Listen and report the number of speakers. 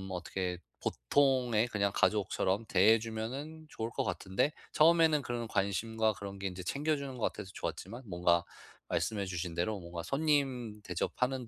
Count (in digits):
1